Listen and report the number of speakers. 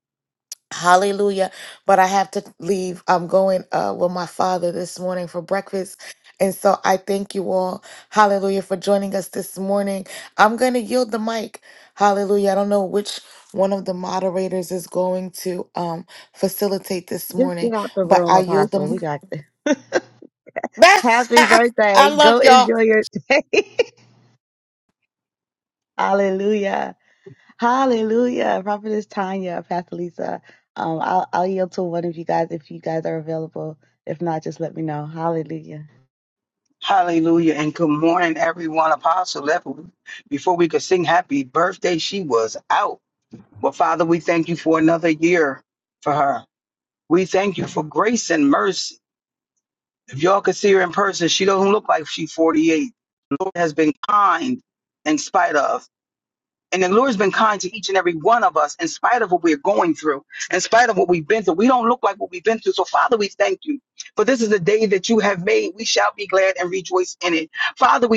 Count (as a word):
three